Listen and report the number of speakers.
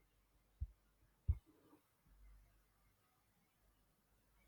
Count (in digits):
0